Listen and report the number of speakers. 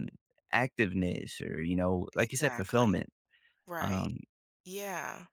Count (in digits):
2